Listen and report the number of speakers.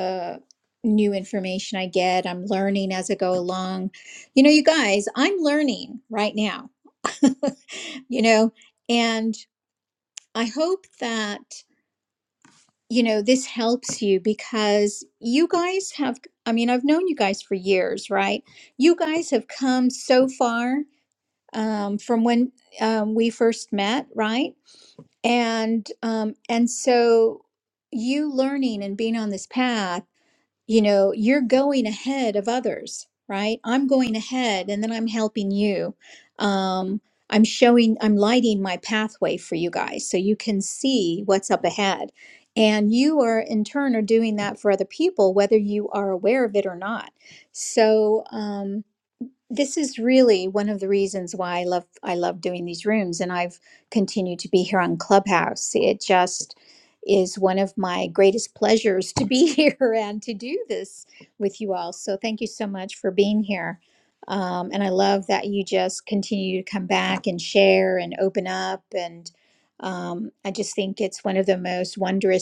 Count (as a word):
one